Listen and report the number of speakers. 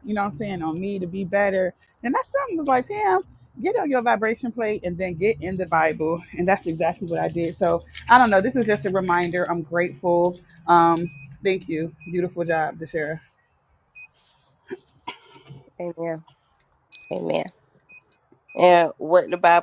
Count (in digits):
2